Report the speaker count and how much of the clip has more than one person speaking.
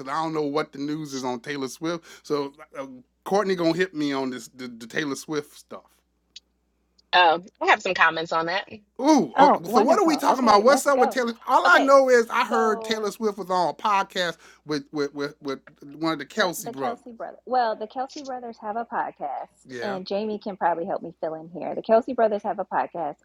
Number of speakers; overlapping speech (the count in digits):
3, about 15%